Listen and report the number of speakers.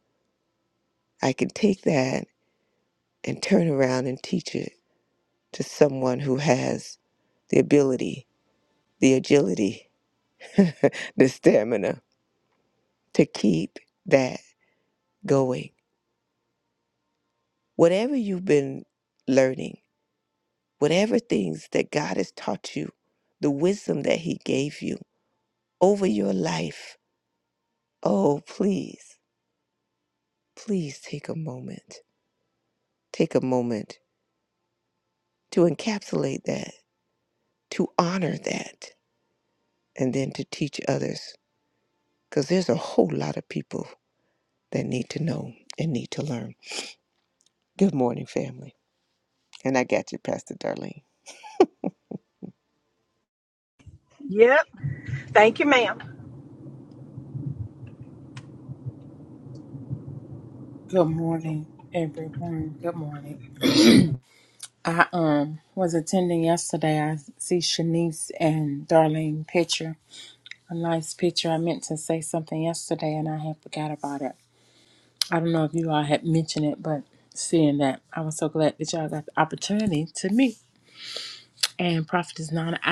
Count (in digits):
3